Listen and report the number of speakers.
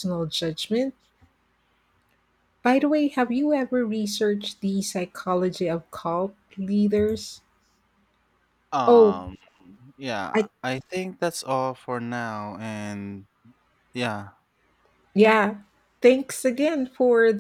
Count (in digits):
2